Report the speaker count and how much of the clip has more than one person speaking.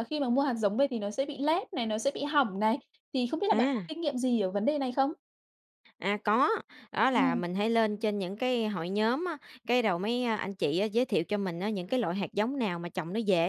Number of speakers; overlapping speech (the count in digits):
2, about 3%